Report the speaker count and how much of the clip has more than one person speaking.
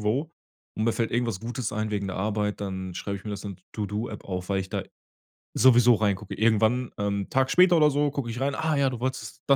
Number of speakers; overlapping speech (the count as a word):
one, no overlap